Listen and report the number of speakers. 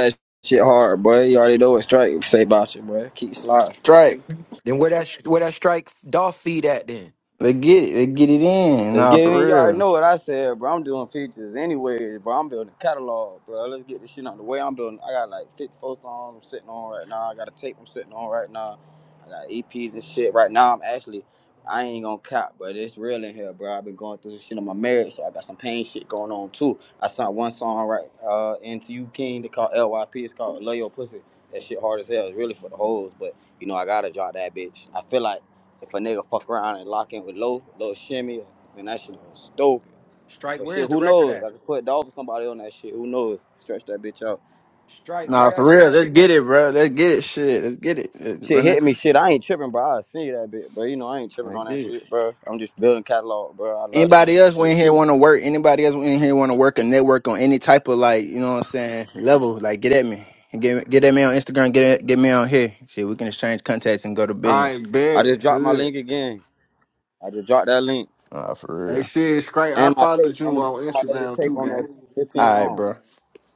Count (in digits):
4